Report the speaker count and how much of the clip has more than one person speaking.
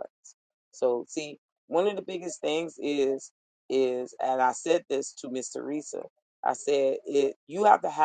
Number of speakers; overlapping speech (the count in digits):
1, no overlap